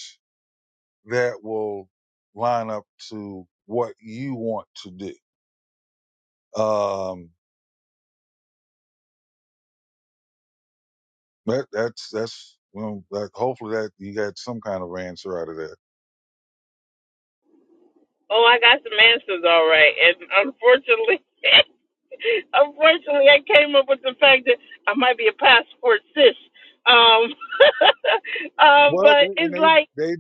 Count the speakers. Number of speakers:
two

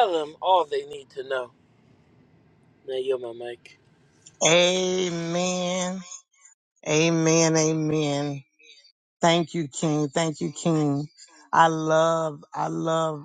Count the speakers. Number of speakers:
two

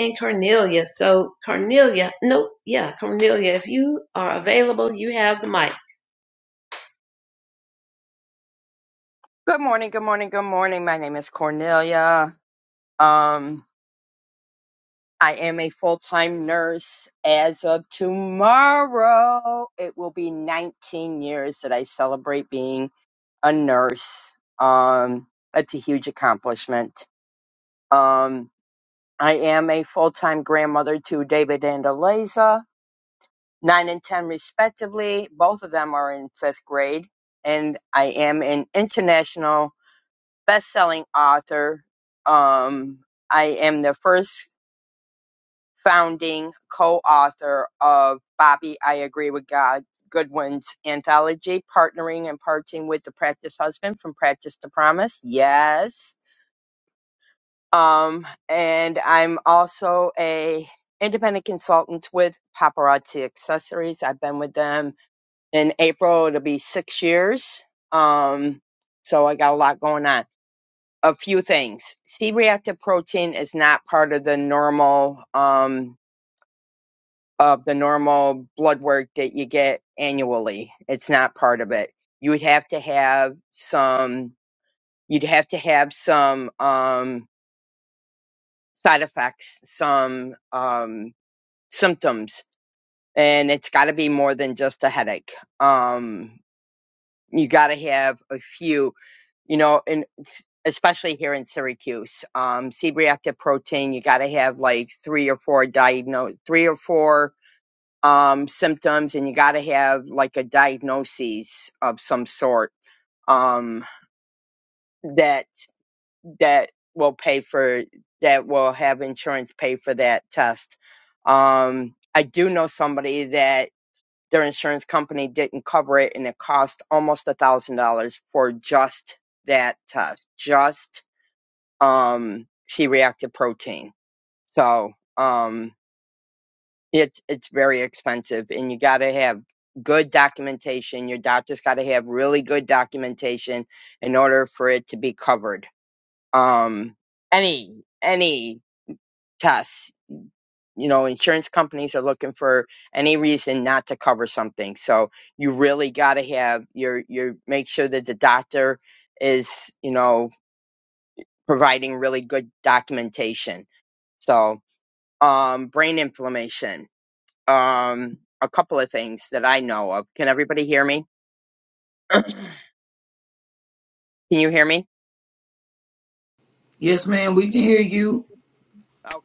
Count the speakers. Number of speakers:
three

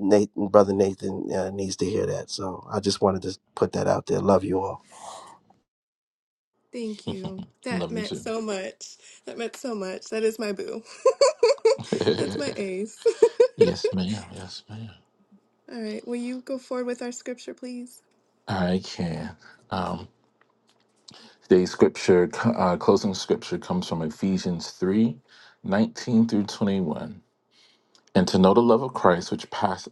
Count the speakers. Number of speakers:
three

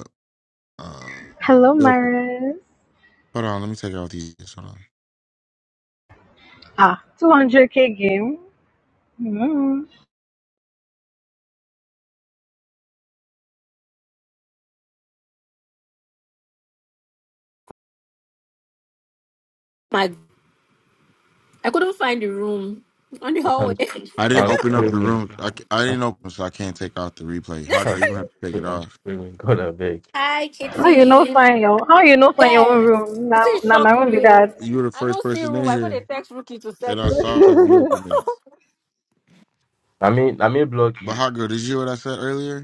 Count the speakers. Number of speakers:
four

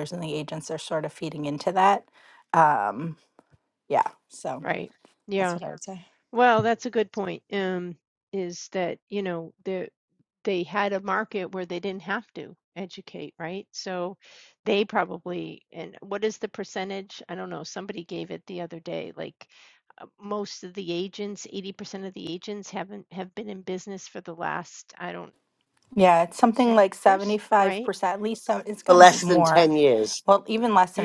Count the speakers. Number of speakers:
three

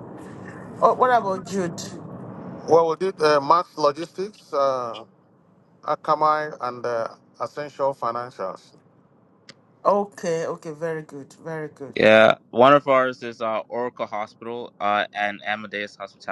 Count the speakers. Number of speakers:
three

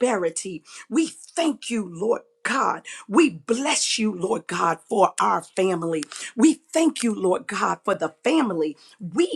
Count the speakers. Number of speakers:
one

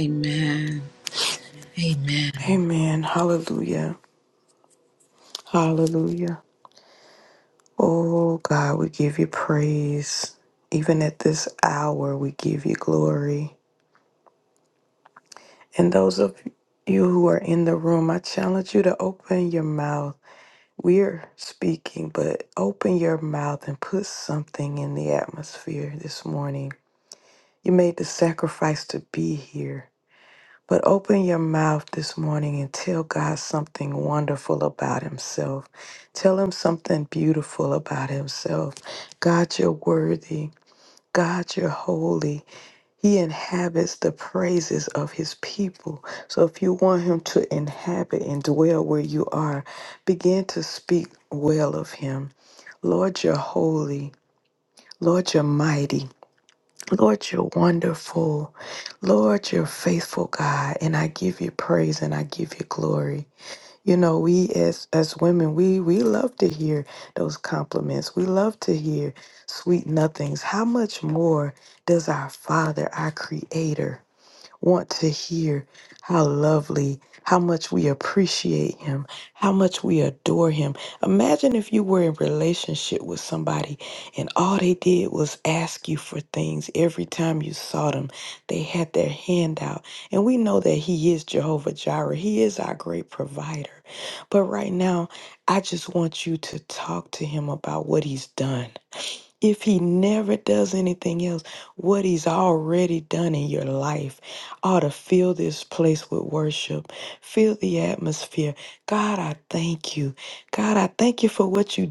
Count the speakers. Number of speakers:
two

